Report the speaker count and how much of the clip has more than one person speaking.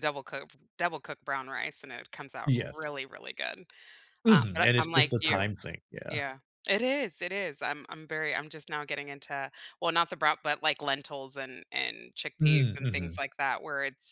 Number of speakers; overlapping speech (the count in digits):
2, about 17%